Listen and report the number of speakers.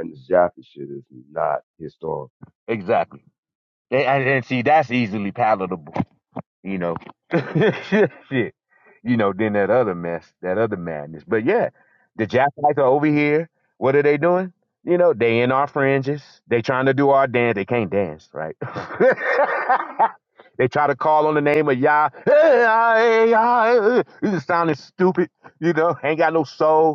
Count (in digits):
2